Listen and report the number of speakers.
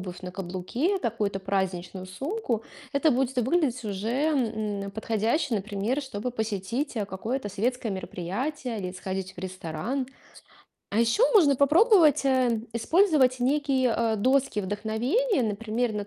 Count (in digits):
1